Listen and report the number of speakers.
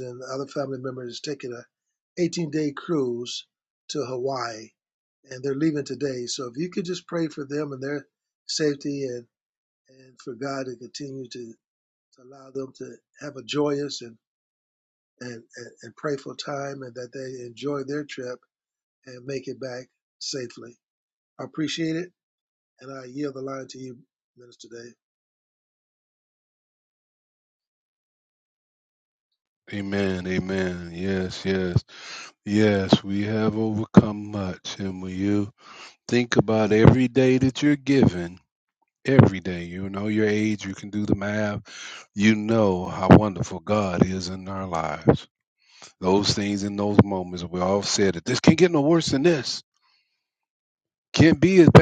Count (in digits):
2